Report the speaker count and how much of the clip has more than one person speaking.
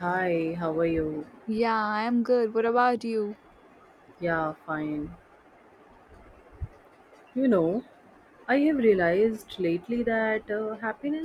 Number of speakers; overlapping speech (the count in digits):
2, no overlap